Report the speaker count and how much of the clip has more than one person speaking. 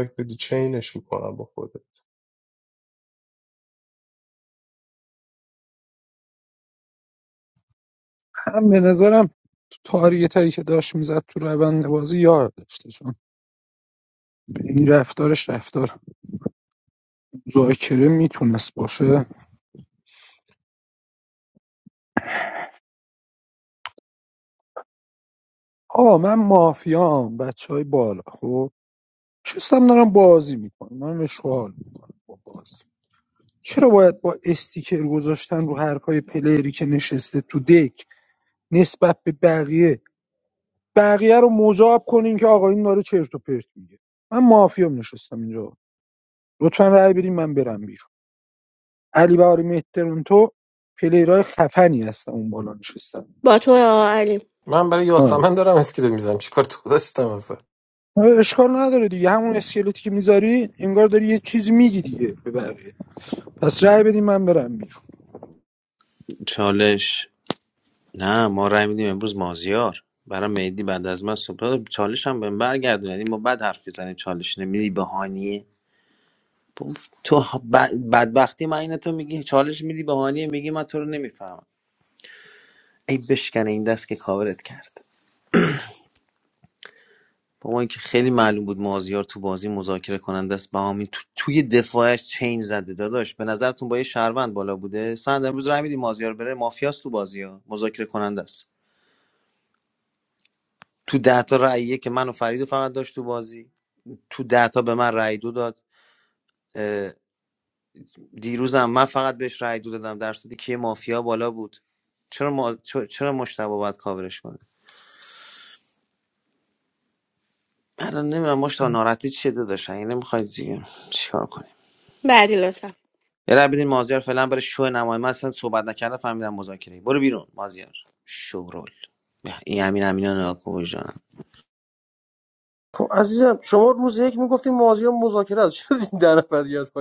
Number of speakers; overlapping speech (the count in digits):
6, under 1%